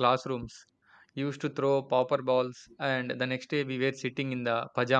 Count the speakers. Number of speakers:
1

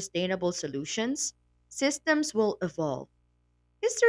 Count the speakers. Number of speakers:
1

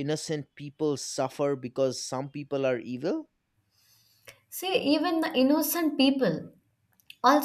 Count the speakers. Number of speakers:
2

